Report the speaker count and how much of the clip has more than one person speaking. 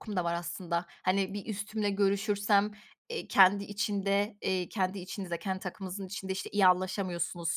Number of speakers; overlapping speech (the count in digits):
1, no overlap